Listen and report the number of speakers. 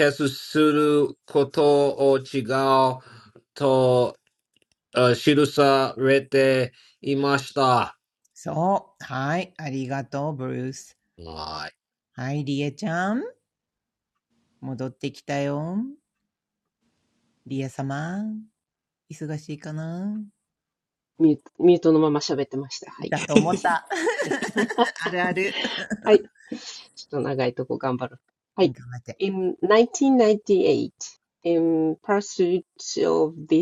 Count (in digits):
3